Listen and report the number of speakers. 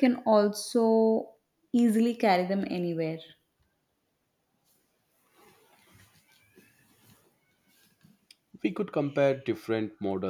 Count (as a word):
two